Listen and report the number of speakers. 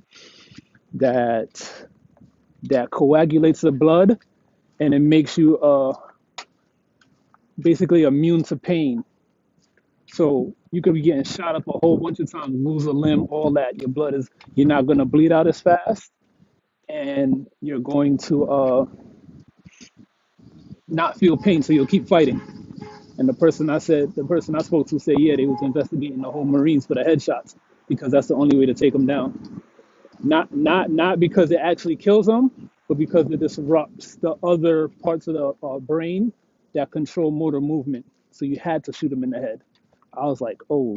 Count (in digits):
1